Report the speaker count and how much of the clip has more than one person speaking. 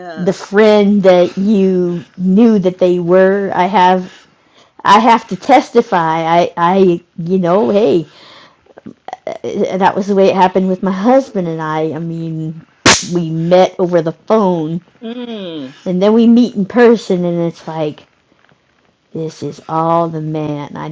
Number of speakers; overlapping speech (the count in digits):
2, about 1%